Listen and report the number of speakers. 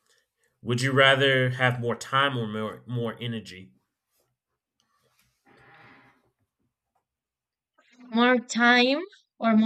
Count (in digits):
2